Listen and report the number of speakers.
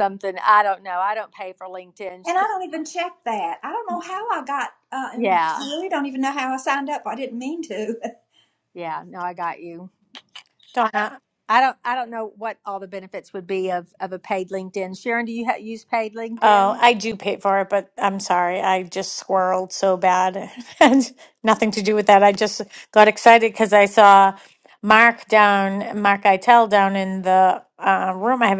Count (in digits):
3